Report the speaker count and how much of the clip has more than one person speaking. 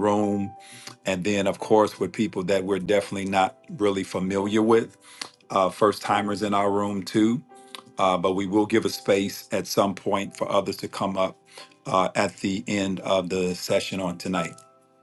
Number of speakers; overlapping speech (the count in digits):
1, no overlap